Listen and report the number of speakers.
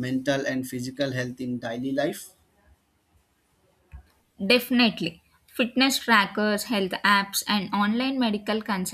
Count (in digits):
2